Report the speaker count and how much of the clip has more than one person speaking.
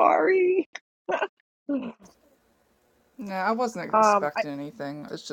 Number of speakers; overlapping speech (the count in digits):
2, about 10%